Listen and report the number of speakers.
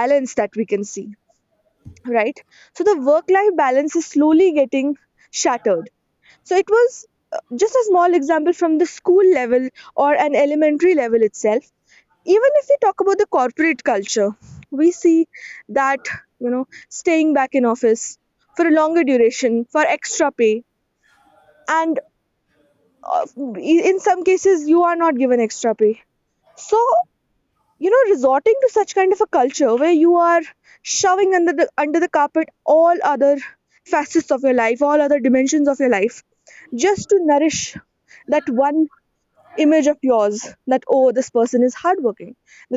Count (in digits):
1